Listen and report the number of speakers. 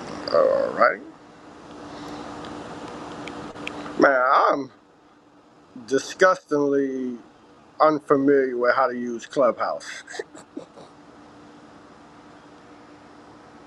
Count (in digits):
1